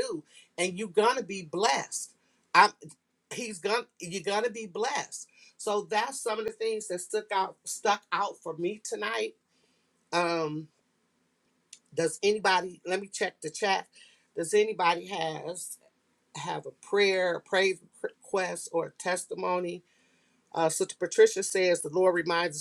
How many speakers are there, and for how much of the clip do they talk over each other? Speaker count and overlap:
one, no overlap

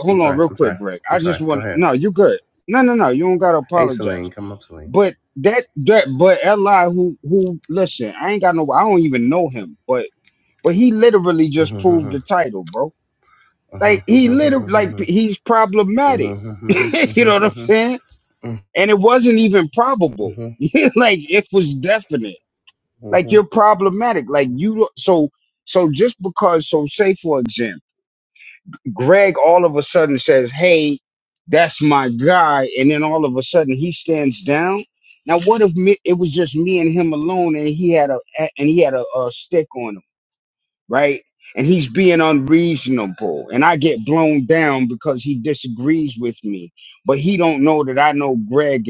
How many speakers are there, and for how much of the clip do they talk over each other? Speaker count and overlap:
two, about 6%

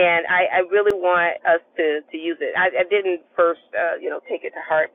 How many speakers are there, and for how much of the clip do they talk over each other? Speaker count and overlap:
one, no overlap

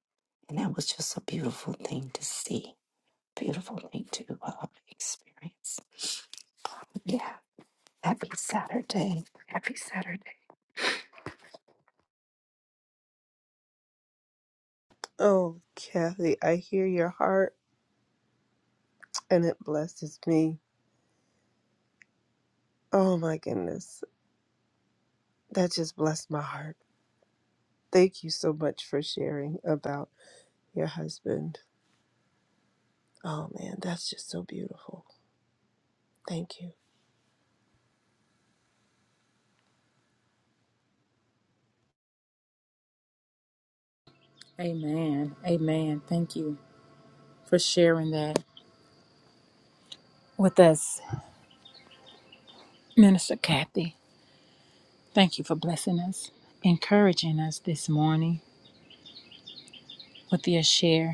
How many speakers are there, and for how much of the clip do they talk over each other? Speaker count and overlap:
three, no overlap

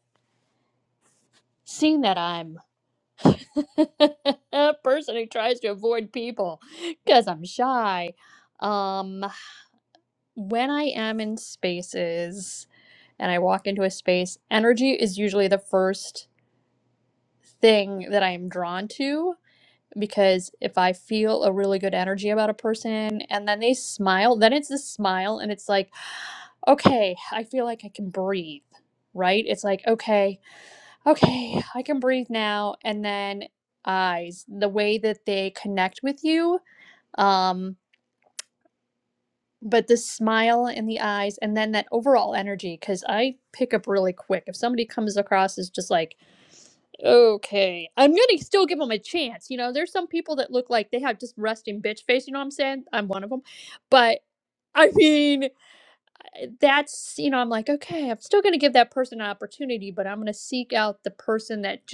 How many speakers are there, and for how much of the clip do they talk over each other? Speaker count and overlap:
one, no overlap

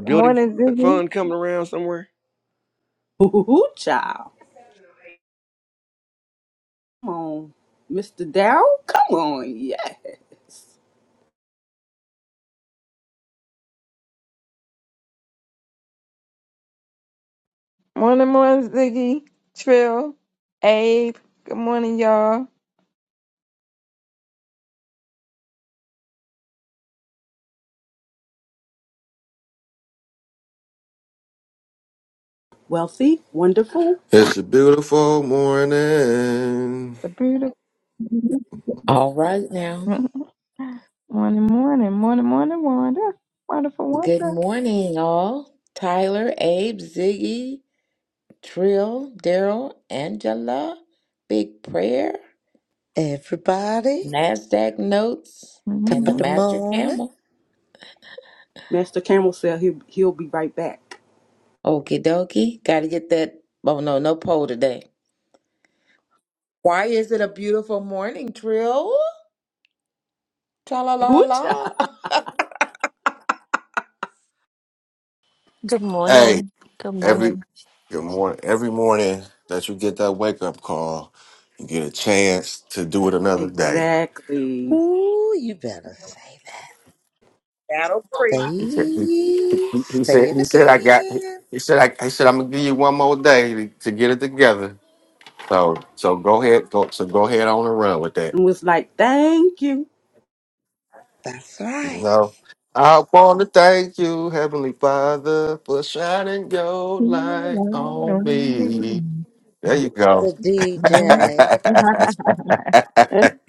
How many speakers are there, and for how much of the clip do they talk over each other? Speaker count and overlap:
seven, about 5%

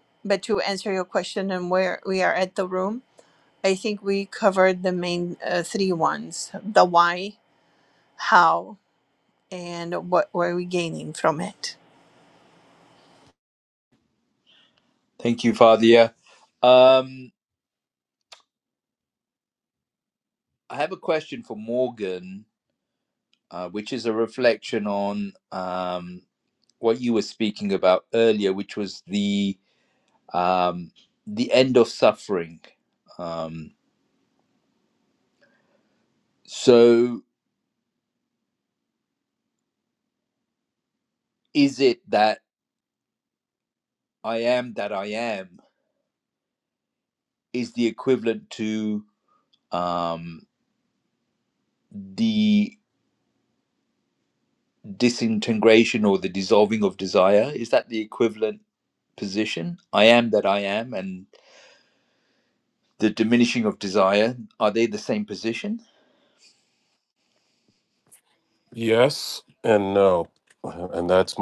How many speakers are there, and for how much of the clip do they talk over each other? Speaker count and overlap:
three, no overlap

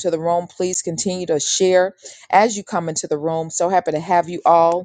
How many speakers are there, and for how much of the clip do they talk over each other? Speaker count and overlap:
one, no overlap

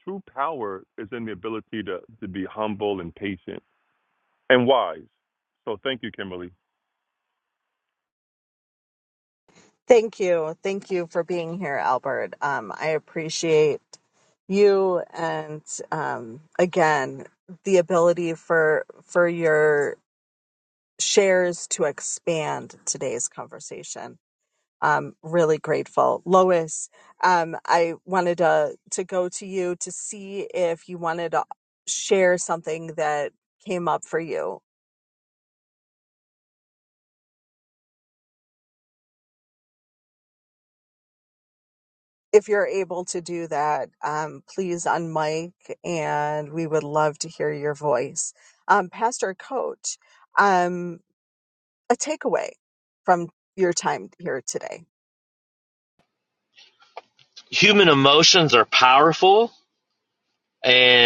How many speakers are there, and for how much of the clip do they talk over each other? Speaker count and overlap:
three, no overlap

